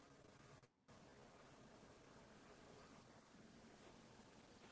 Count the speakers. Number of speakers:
0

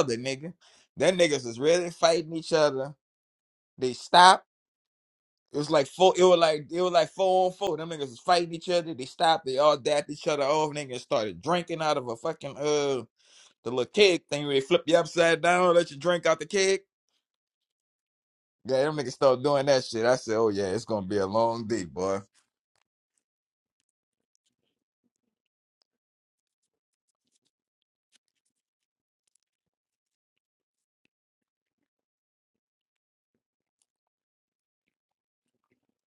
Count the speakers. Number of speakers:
1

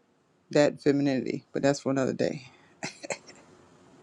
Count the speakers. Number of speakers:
1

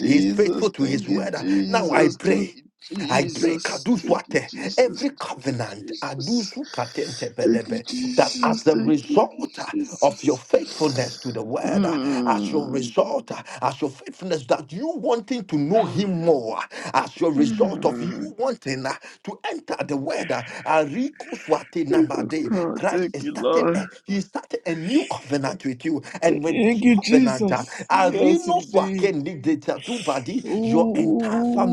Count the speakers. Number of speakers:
2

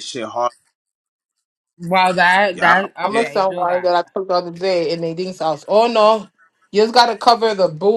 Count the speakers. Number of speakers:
3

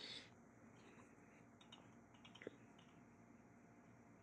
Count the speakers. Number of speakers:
0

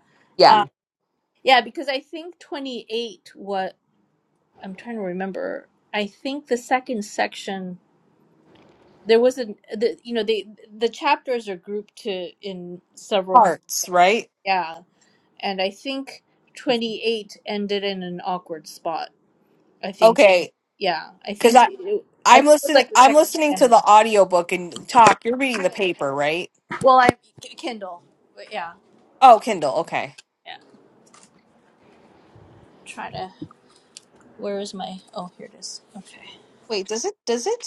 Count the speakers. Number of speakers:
2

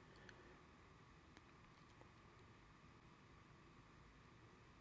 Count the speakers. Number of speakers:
0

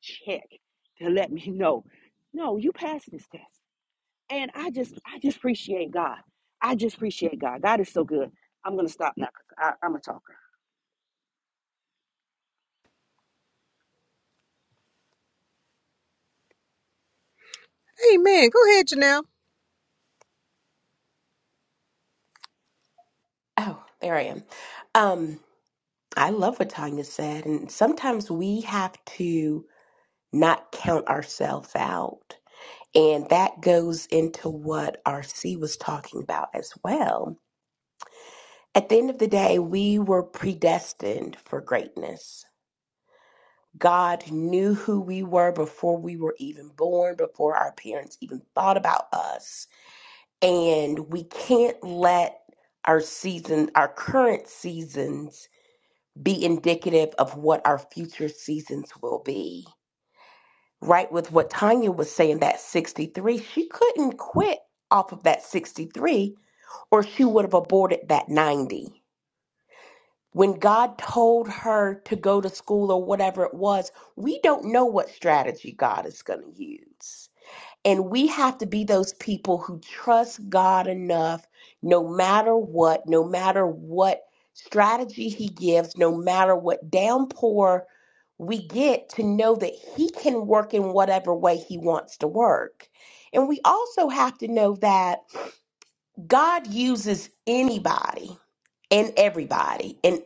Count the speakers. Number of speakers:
3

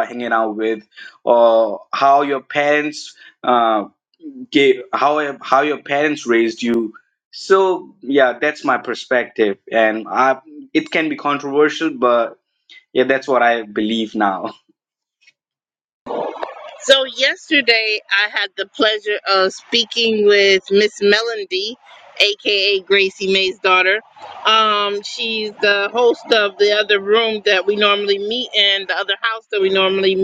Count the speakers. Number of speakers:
2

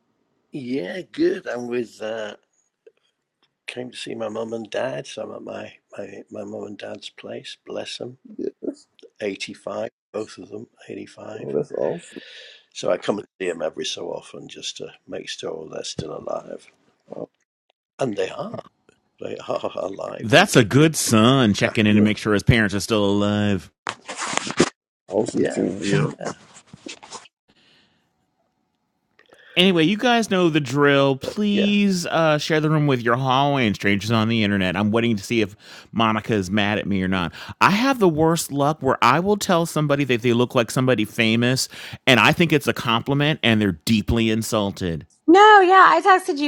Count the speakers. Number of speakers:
4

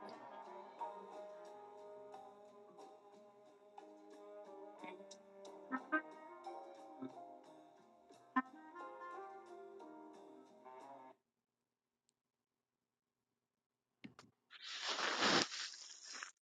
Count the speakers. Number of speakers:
0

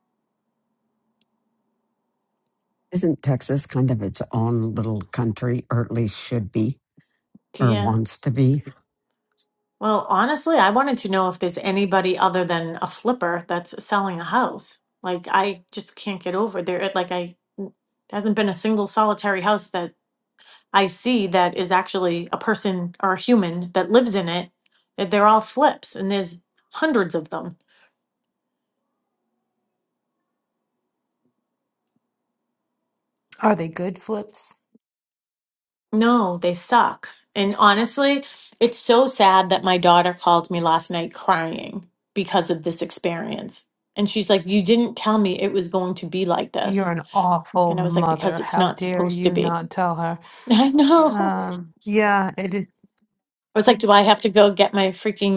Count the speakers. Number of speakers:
3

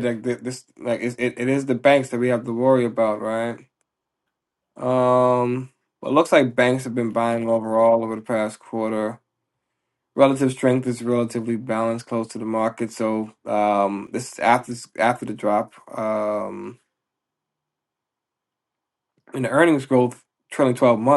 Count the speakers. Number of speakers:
1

